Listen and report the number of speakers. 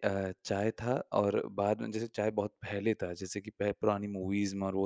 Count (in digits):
1